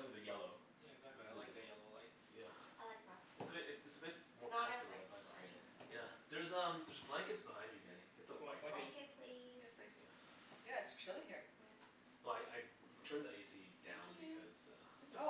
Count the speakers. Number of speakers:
four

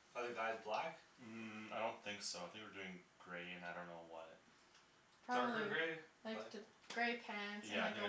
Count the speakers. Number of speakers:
three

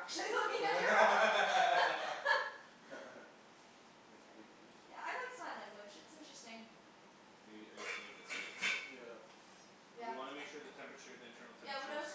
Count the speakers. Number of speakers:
three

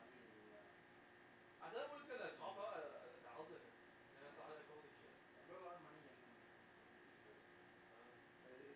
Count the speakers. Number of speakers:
two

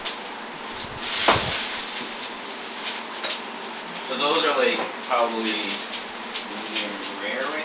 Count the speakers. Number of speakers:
one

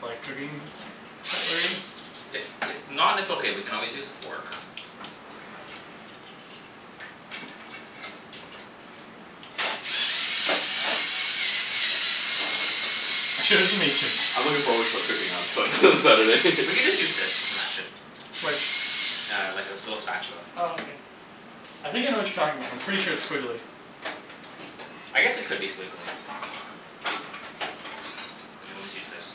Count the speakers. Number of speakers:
three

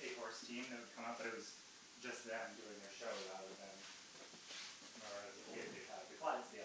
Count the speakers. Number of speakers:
one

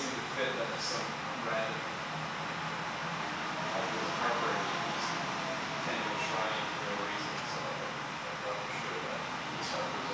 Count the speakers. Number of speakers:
one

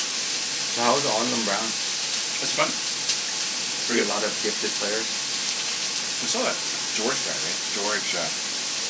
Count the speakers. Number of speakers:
two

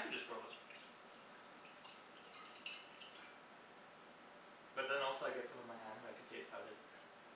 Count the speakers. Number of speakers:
one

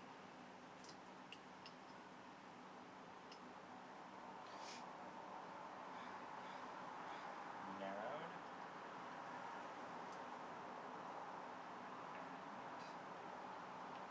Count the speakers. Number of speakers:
one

